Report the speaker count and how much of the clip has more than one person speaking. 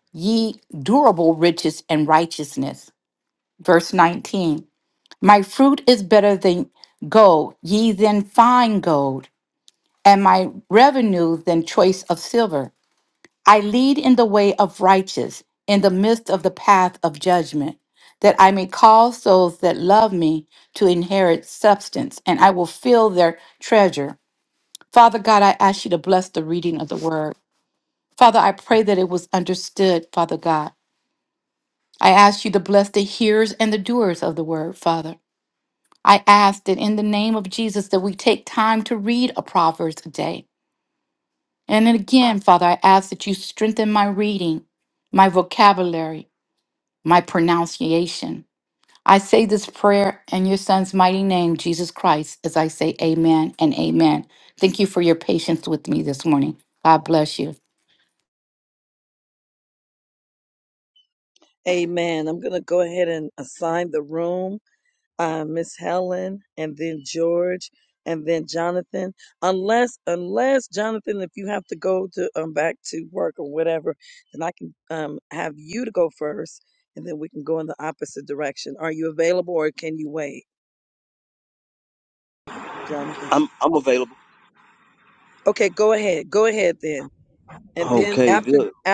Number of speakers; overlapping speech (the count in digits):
3, about 1%